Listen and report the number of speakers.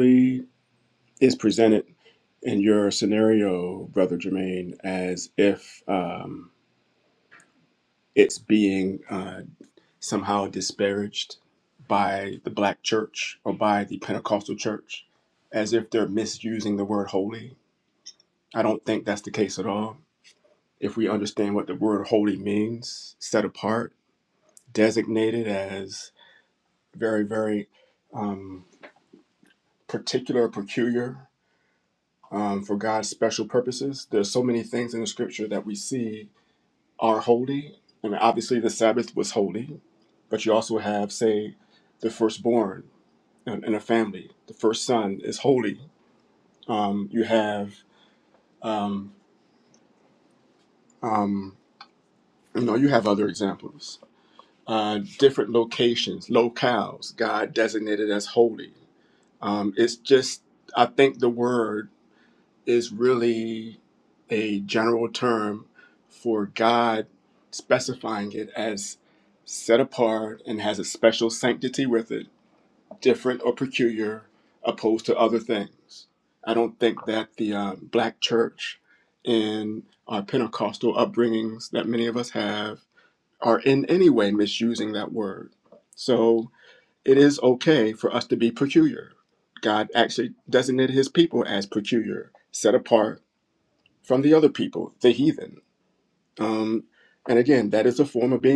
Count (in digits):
1